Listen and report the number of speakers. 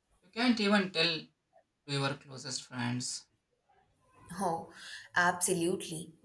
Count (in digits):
2